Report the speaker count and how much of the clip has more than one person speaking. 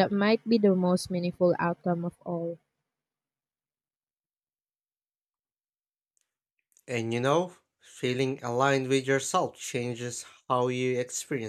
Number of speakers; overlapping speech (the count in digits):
2, no overlap